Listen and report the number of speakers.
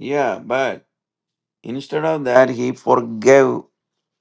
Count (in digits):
1